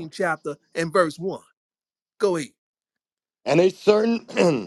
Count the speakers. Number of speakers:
2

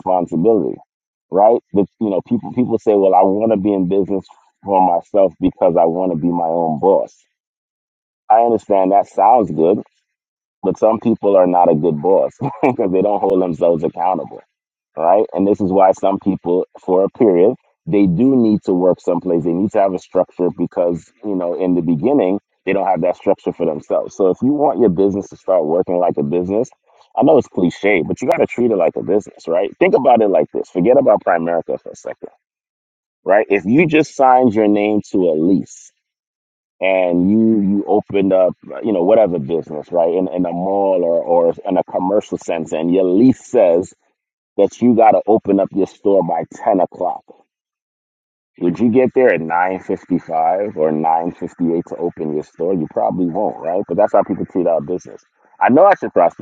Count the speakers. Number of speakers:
1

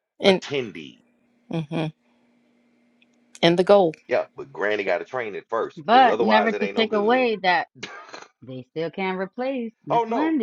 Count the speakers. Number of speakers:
3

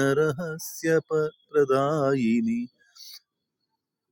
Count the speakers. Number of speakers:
1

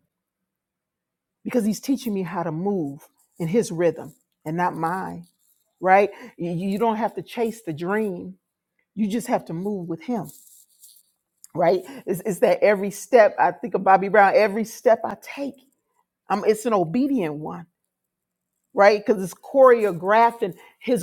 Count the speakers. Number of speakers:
1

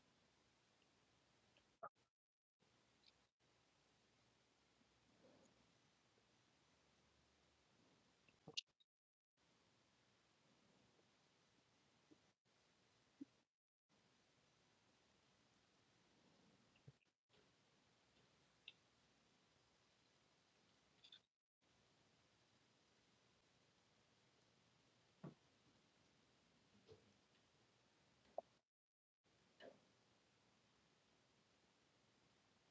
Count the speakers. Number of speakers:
0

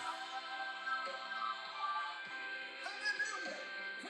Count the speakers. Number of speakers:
0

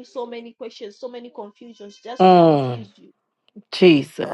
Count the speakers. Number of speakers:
2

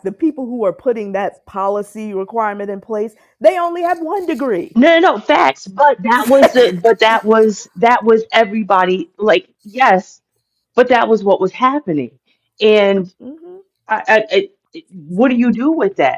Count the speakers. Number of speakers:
2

